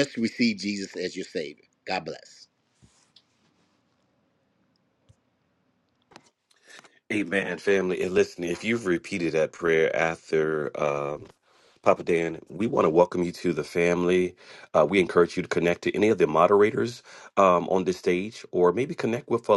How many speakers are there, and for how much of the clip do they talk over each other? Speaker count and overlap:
2, no overlap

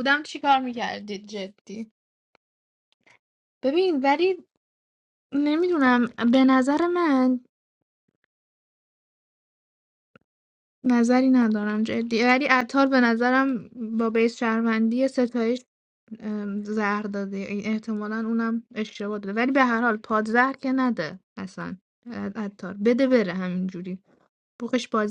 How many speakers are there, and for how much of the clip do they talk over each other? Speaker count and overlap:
1, no overlap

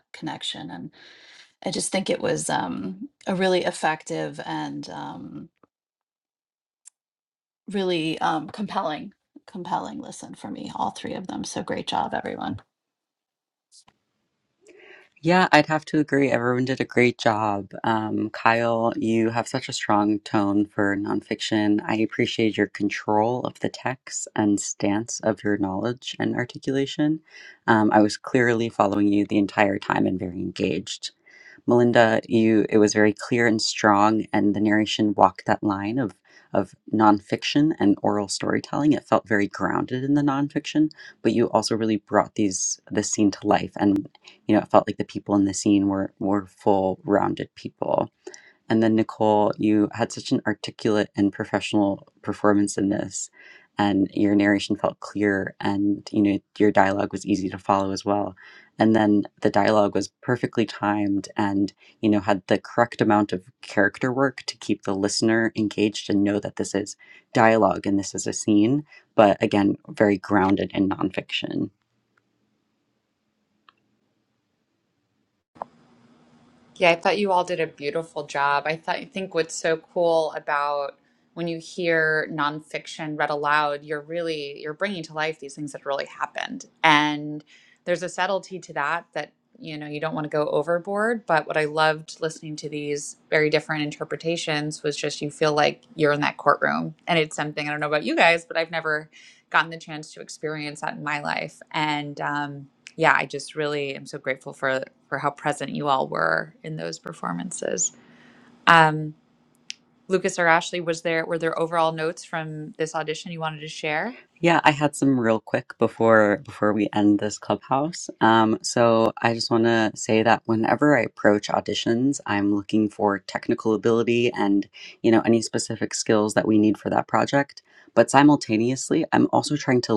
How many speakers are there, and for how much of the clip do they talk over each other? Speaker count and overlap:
3, no overlap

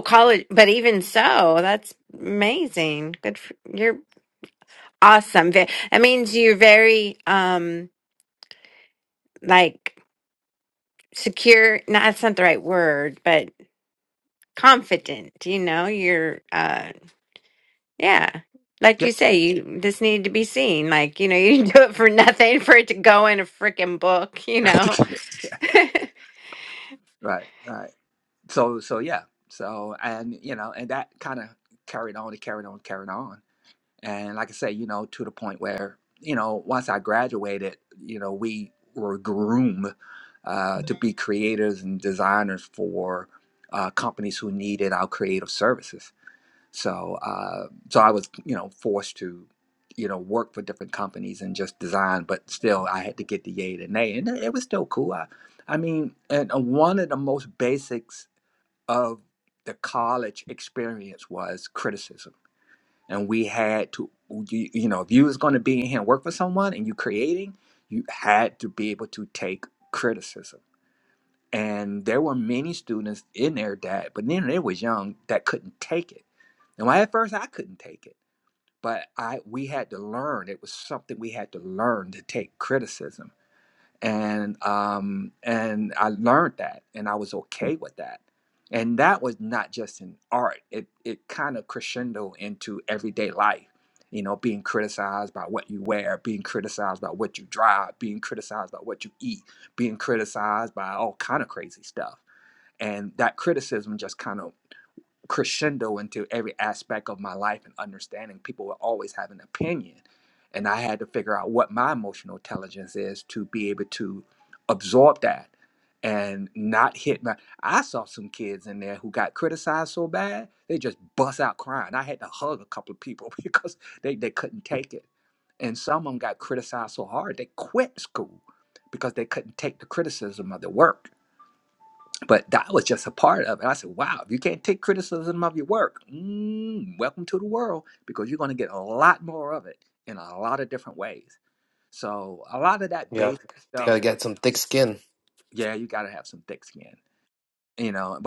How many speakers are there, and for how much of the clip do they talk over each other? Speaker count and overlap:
3, under 1%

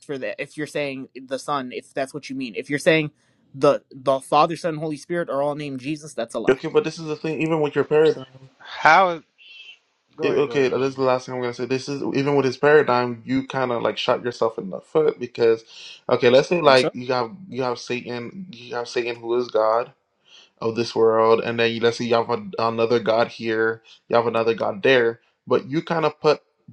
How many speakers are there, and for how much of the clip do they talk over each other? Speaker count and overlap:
3, about 4%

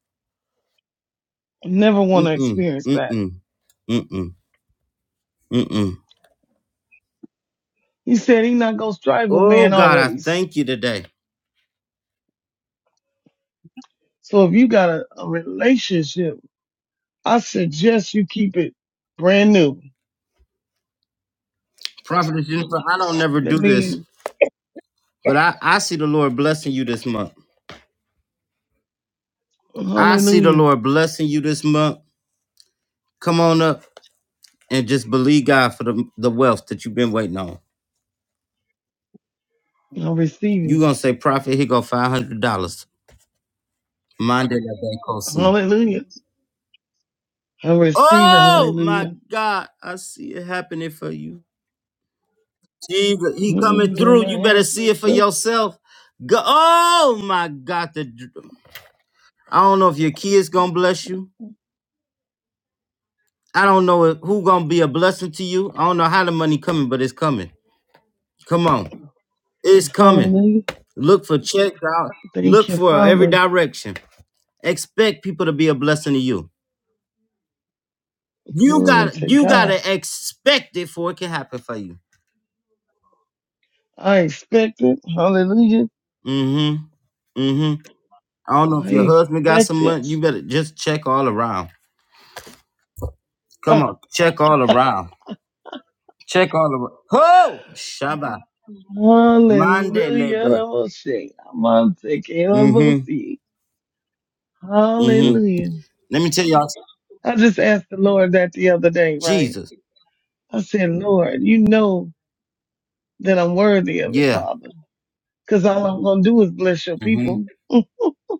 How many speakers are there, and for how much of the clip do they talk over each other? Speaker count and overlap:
2, about 11%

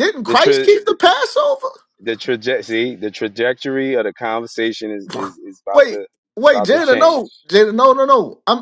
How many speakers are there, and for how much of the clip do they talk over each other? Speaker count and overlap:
2, about 17%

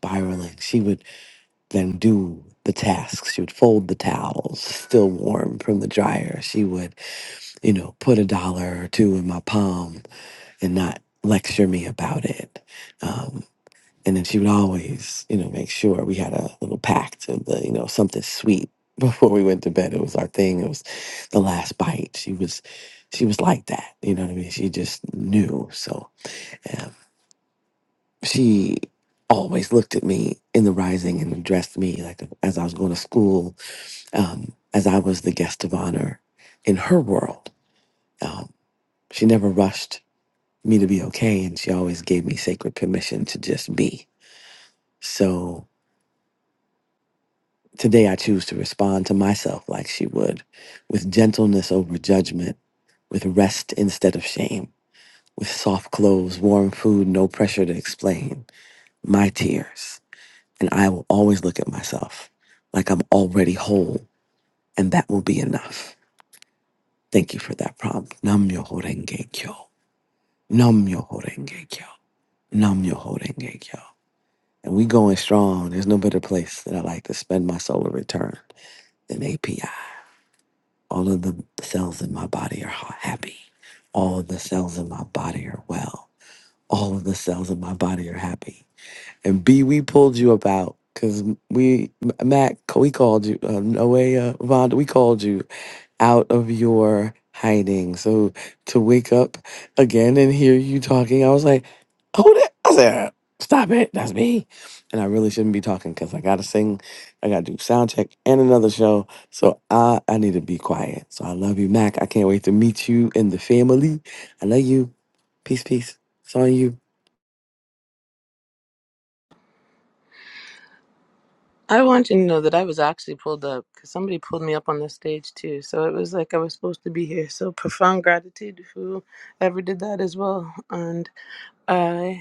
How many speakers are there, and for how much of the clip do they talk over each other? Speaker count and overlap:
2, no overlap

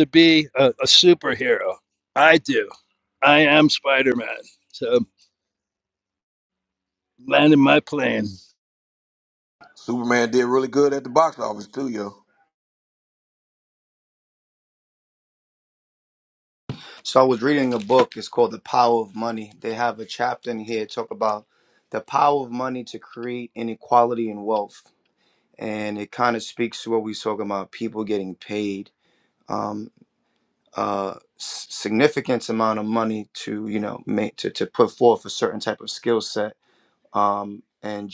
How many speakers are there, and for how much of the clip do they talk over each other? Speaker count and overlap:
3, no overlap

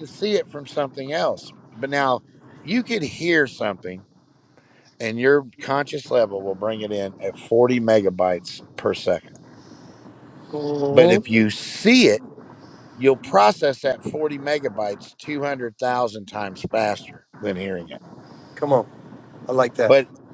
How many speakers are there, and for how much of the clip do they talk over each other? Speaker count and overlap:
2, about 2%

